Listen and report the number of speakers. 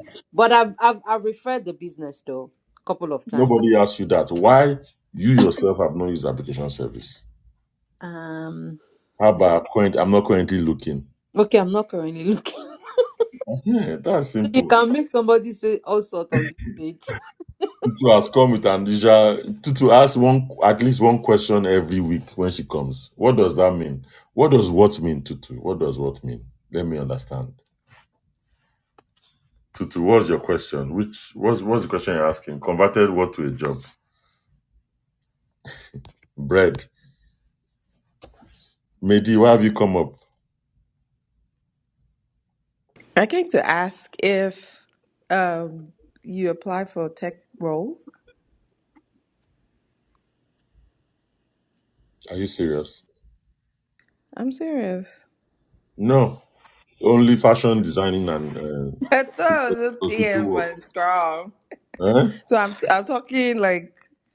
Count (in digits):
3